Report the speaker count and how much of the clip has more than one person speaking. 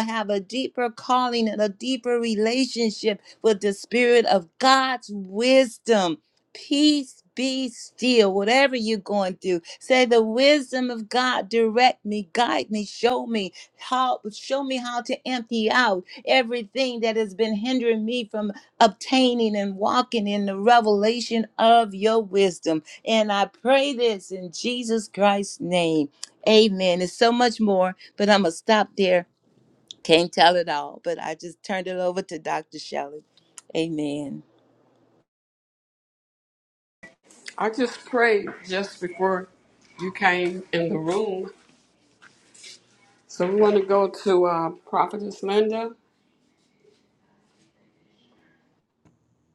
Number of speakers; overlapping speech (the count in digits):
2, no overlap